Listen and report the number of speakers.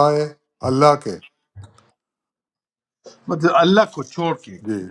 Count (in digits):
2